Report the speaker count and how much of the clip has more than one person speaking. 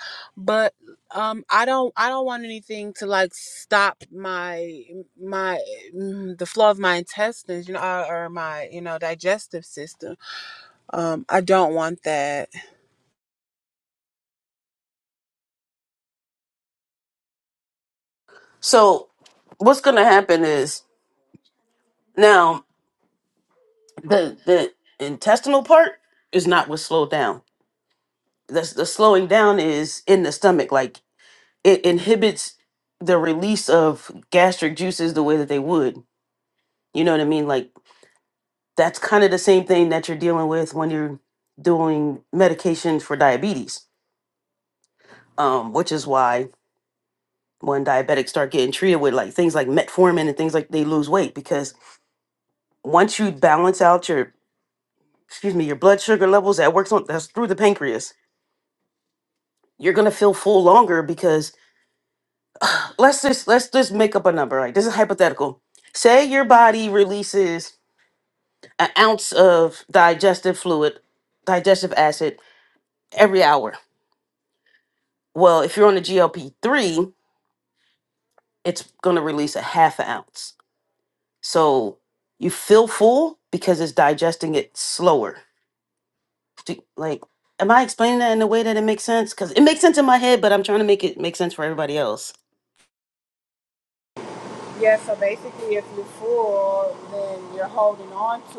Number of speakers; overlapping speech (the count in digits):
2, no overlap